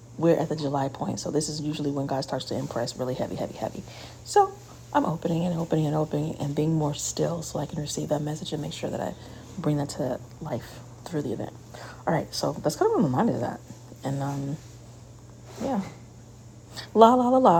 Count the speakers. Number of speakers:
1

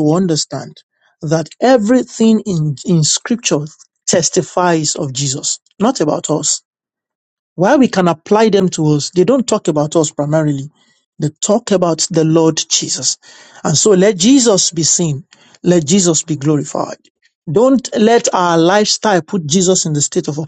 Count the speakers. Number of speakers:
1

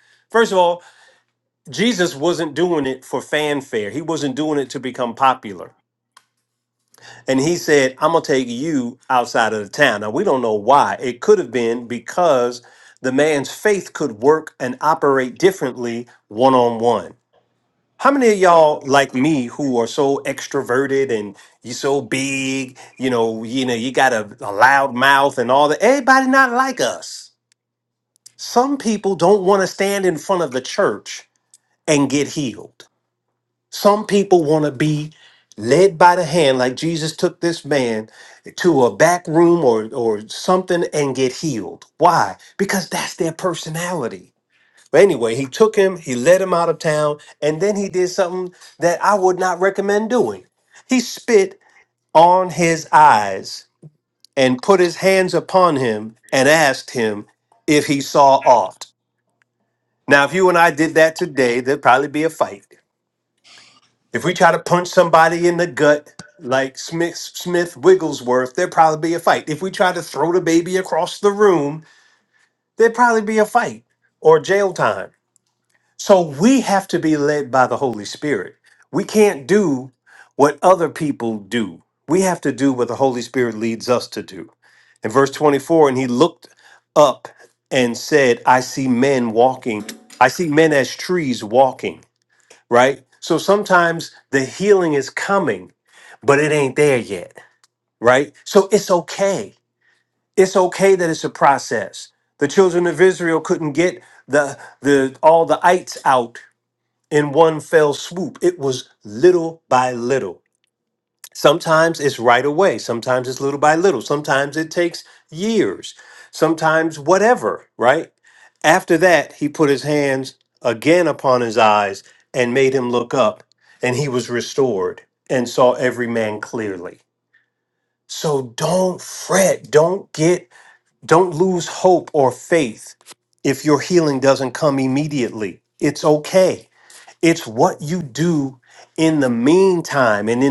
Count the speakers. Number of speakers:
1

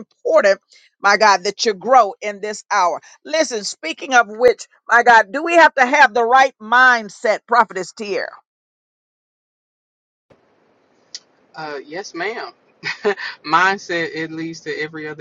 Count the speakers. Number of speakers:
2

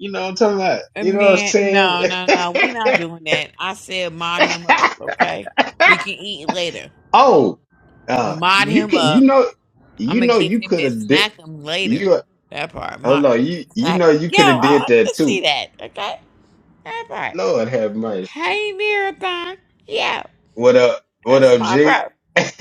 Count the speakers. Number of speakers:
2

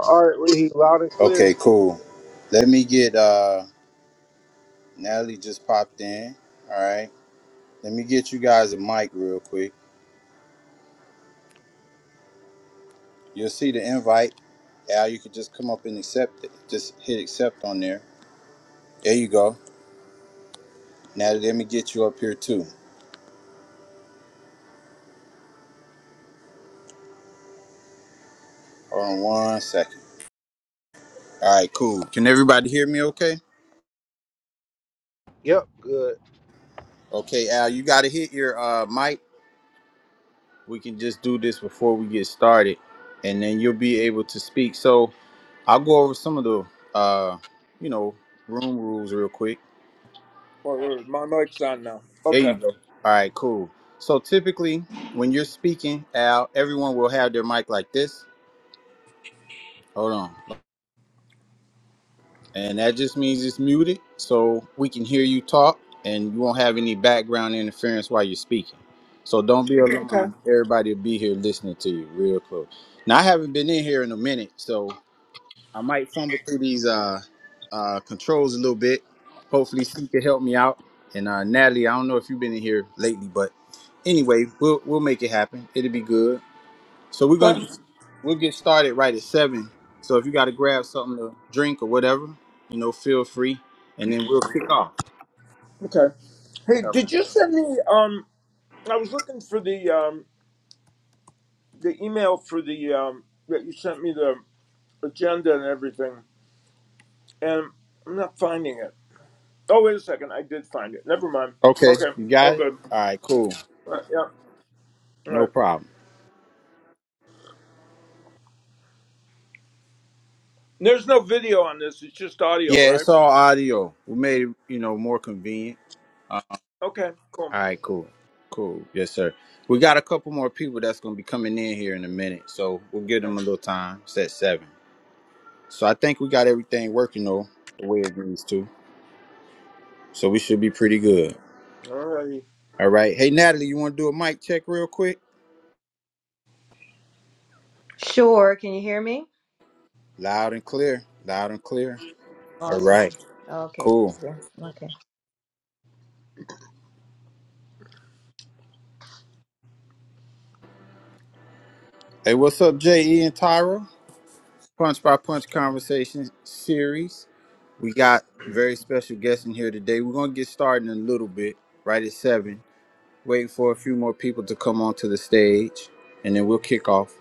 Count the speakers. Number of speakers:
4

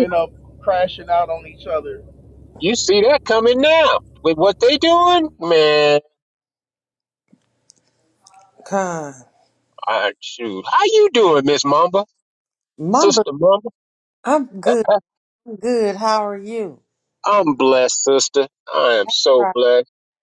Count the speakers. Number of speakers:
3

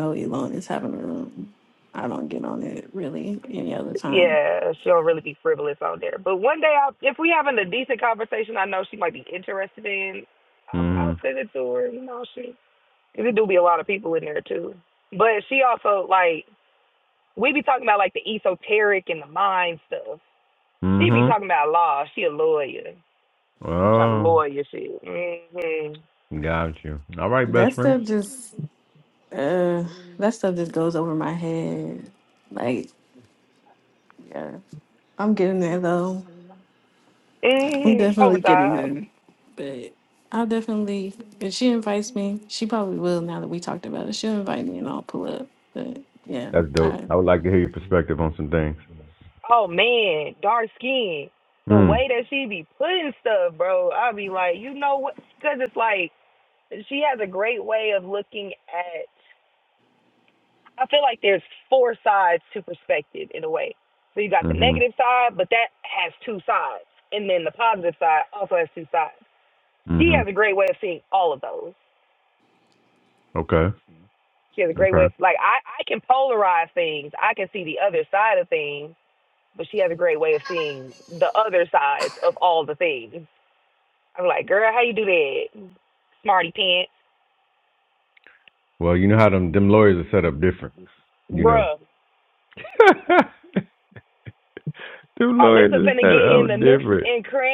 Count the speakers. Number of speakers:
3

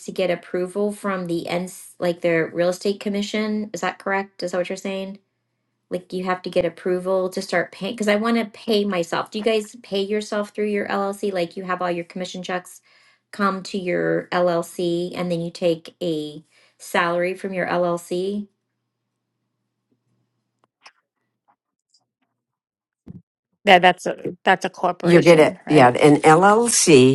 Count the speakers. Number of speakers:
3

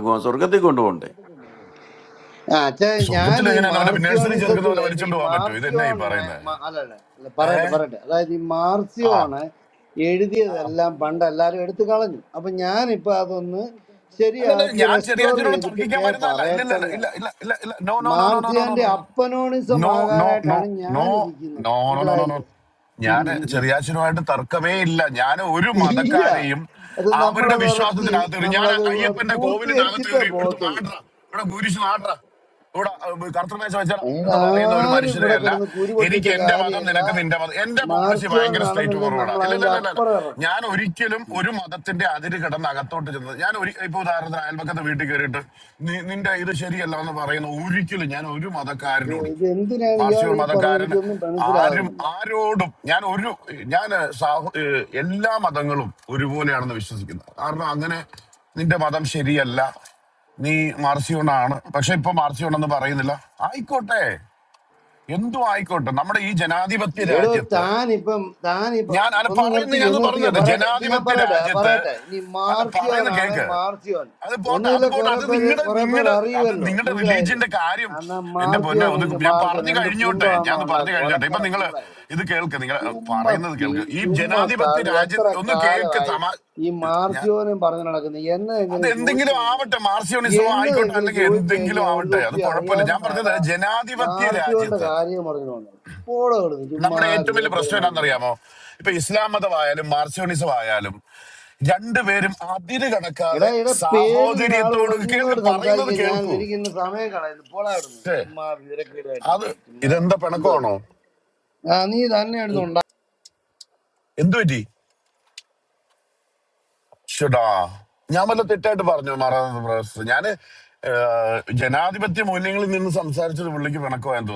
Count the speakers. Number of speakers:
3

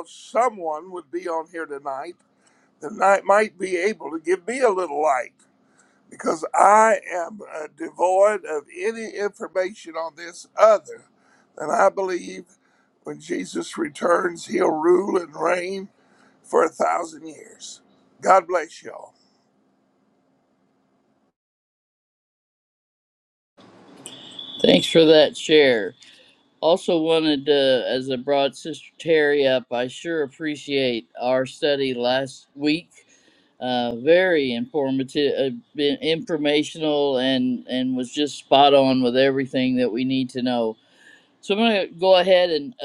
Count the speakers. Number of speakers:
2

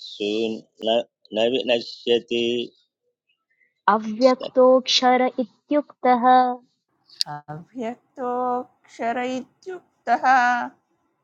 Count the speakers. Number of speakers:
3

